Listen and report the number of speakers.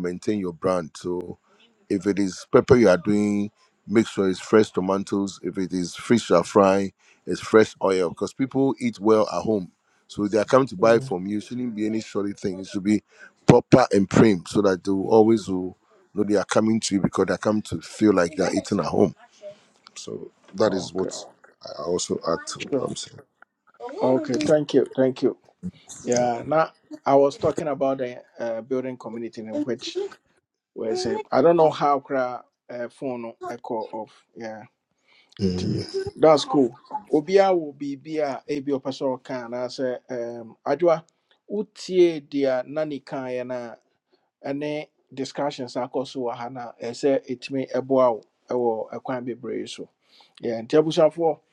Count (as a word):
two